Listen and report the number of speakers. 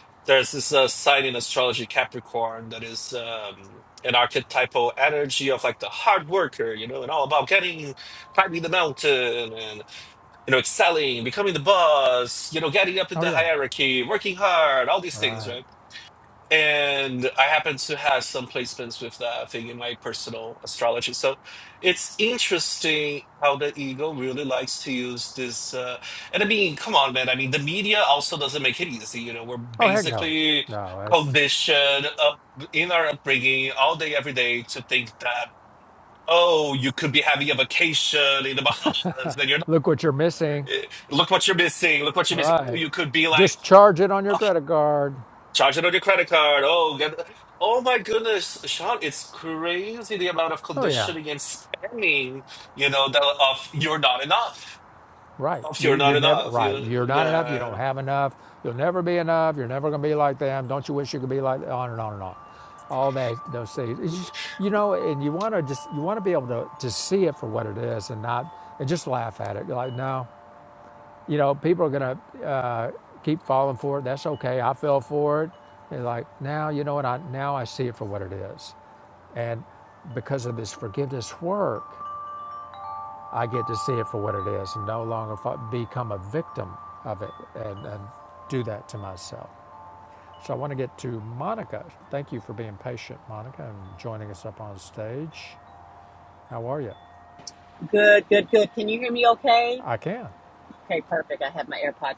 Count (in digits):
3